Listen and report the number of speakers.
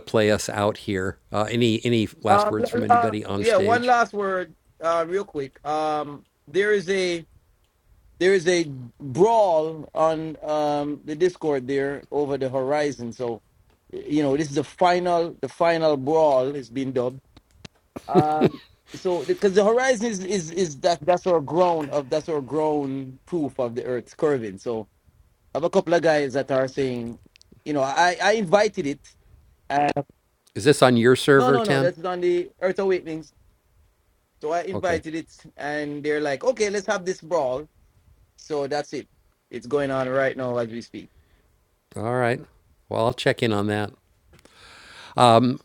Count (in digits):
2